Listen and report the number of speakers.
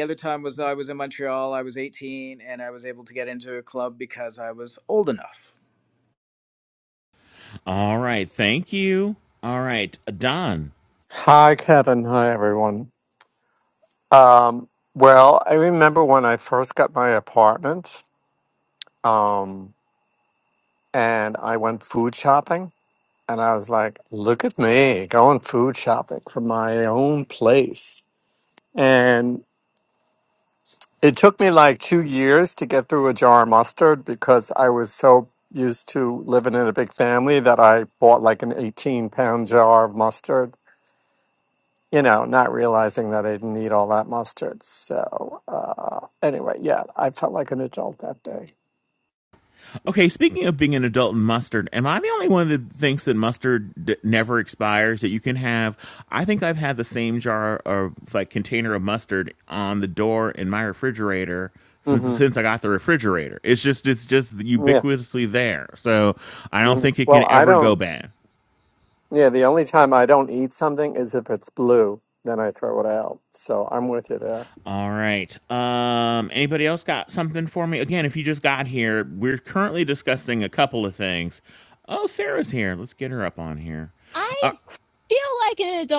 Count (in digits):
4